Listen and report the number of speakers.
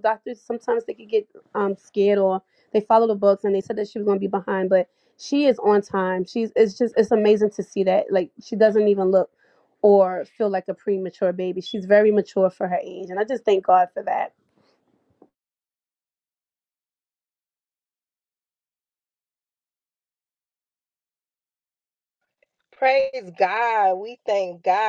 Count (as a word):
two